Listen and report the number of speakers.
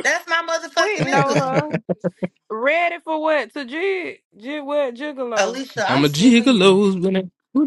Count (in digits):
3